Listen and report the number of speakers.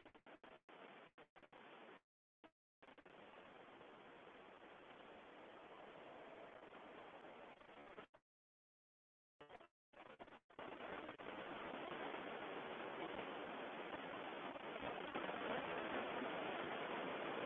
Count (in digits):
0